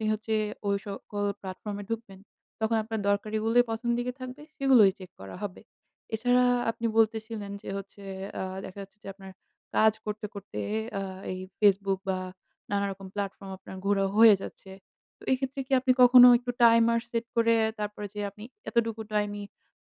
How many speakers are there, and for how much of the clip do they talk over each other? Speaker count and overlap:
one, no overlap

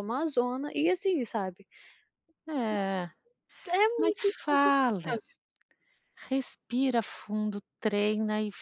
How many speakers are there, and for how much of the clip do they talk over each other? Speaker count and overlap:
two, about 10%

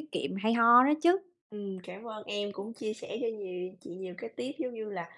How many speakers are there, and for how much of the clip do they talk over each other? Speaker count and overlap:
two, no overlap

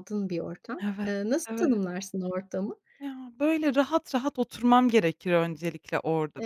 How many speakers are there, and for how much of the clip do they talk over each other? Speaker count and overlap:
two, about 11%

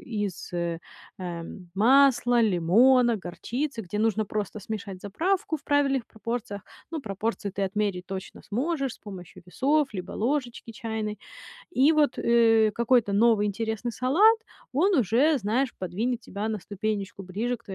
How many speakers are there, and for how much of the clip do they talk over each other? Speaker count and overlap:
one, no overlap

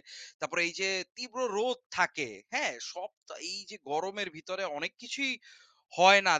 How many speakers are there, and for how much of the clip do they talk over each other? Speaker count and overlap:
one, no overlap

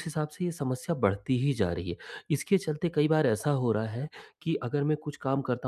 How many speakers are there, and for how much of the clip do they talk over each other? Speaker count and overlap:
one, no overlap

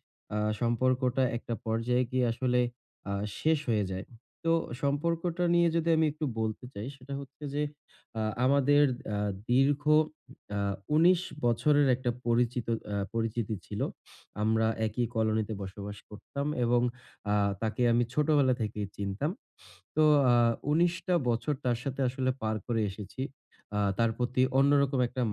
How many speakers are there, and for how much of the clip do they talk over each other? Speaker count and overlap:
one, no overlap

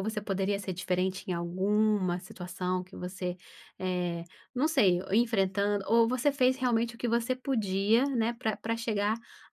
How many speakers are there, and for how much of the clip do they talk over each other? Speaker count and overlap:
one, no overlap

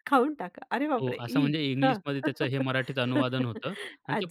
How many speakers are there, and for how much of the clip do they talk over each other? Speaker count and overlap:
two, about 29%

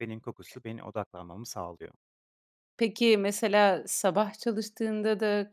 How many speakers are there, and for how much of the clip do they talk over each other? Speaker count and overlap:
two, no overlap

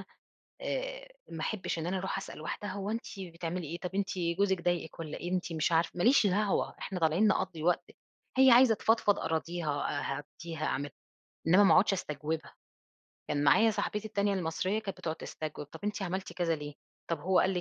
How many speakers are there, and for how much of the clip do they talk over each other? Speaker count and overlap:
one, no overlap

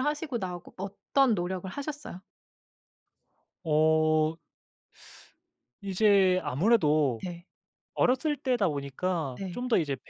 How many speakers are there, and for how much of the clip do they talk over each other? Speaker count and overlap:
two, about 2%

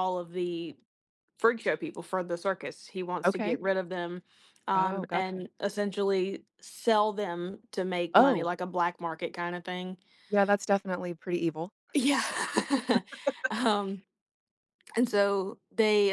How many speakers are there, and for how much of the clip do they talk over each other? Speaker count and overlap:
two, about 8%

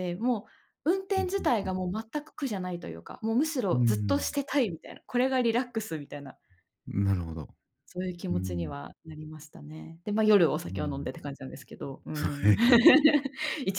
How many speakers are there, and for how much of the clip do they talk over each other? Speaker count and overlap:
two, about 17%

